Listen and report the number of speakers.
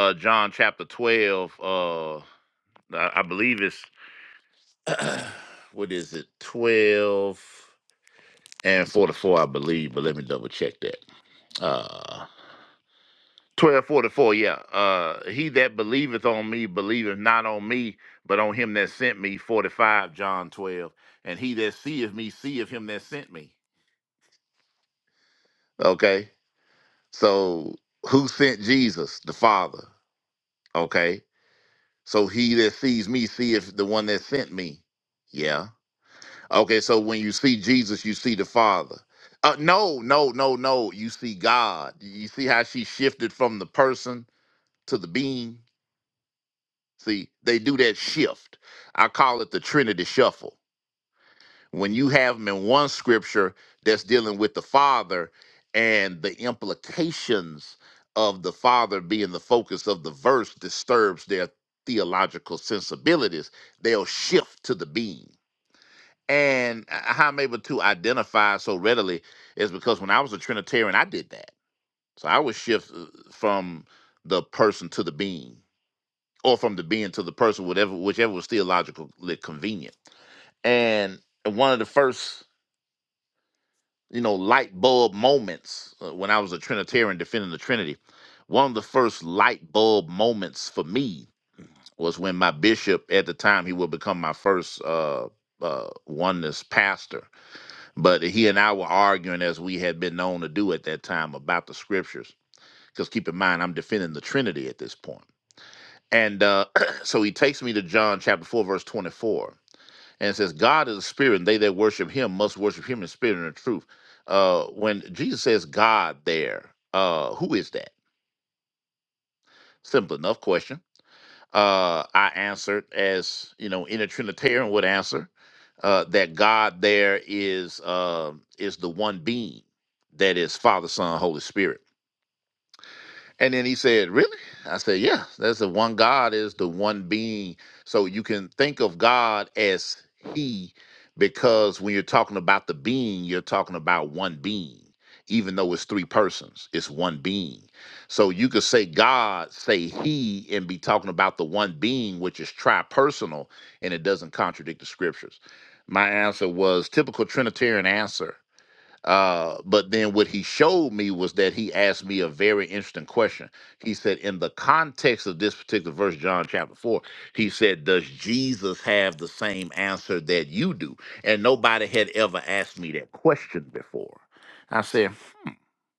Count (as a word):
one